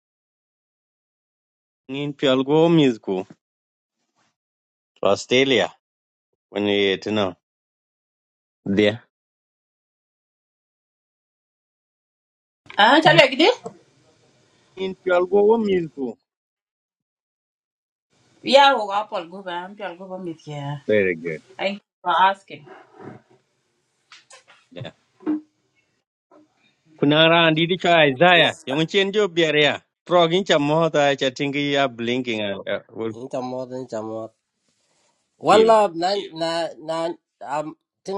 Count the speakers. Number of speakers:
three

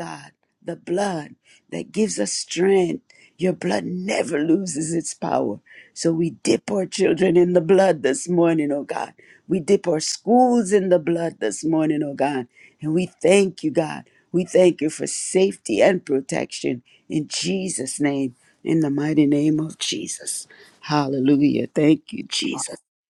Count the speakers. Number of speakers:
one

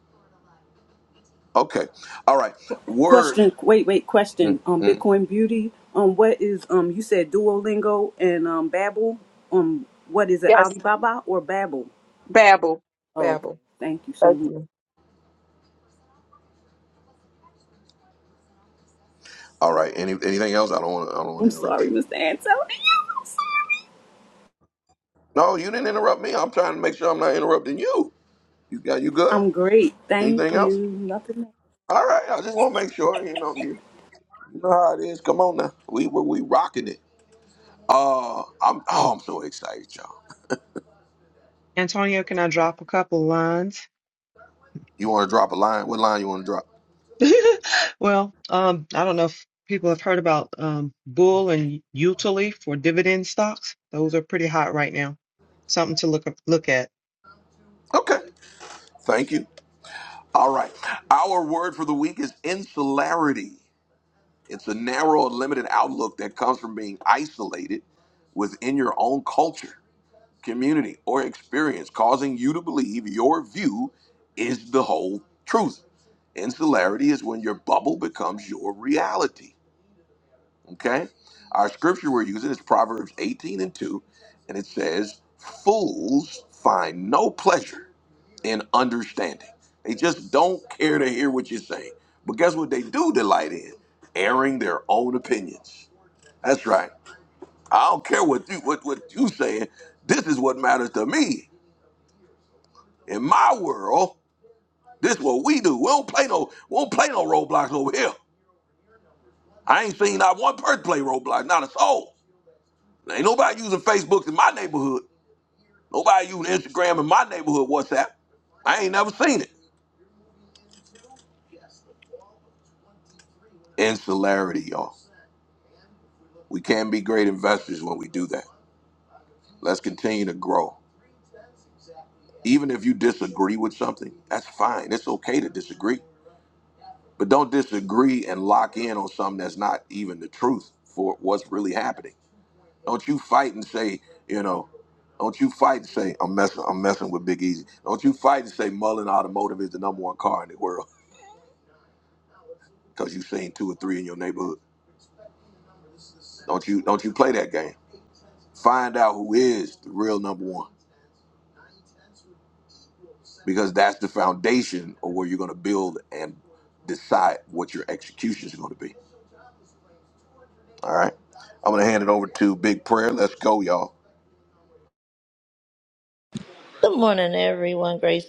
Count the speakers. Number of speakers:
five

